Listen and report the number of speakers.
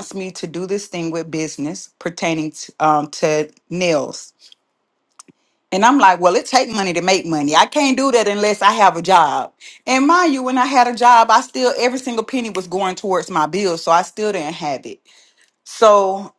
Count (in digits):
1